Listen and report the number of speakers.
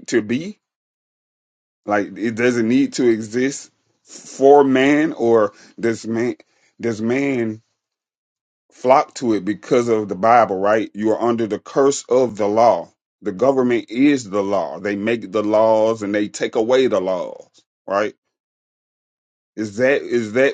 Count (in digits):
1